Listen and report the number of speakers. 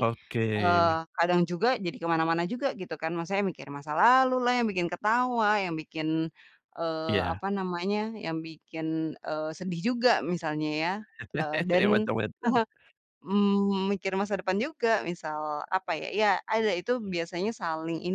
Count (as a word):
two